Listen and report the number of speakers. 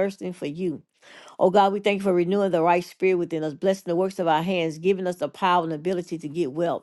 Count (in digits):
1